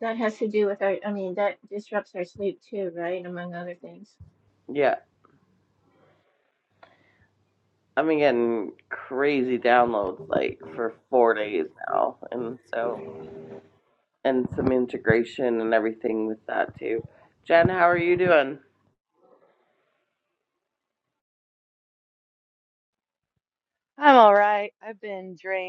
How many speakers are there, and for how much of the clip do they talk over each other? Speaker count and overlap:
3, no overlap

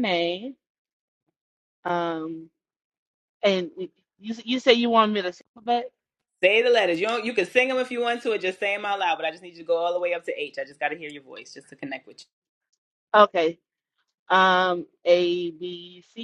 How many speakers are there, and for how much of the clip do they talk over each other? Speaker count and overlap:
2, no overlap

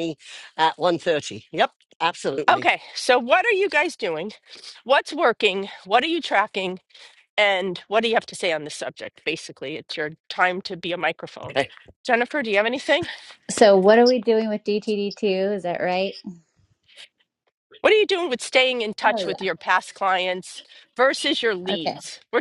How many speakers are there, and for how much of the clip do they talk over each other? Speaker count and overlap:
3, about 4%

